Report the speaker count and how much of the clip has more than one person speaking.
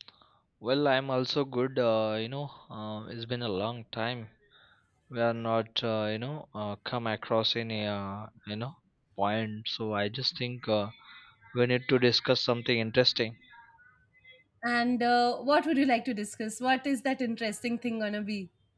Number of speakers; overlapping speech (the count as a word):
two, no overlap